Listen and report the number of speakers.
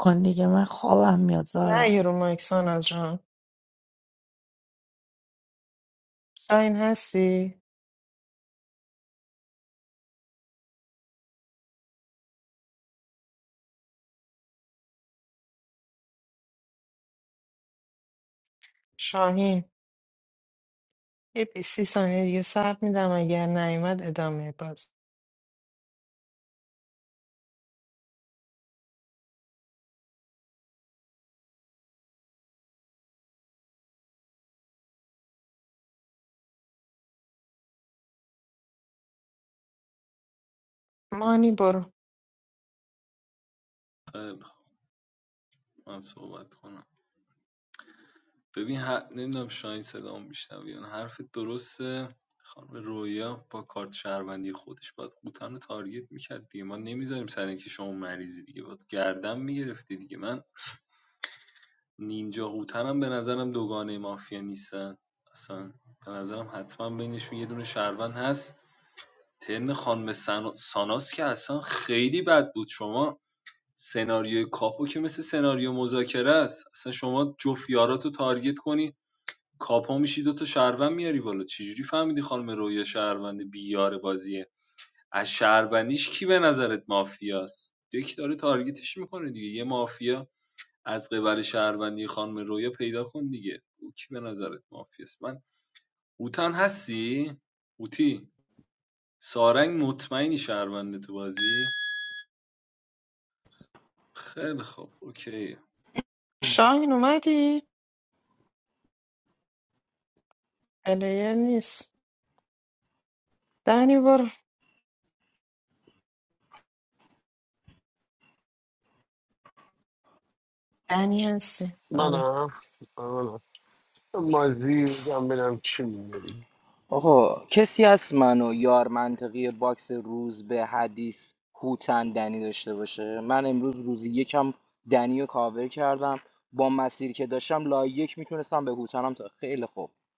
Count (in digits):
5